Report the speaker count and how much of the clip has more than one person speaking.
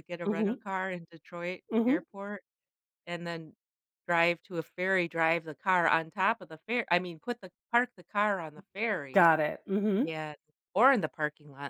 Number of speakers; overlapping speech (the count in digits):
2, about 7%